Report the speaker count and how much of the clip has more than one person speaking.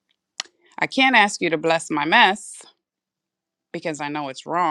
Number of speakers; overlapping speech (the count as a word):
one, no overlap